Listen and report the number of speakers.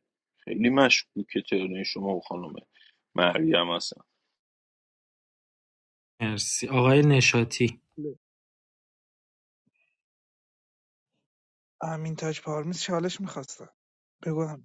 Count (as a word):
three